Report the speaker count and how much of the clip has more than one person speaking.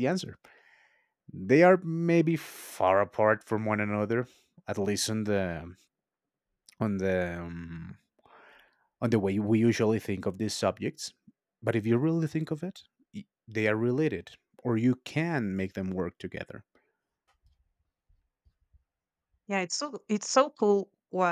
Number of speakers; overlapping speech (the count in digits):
2, no overlap